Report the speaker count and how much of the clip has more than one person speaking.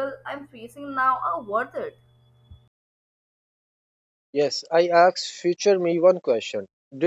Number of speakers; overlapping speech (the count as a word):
two, no overlap